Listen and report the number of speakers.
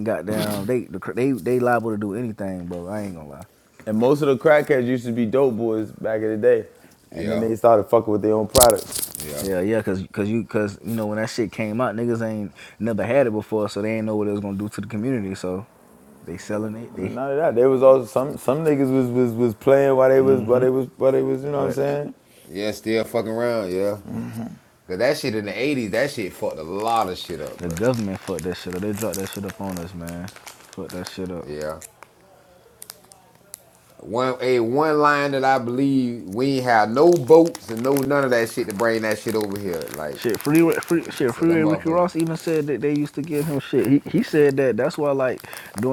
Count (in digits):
3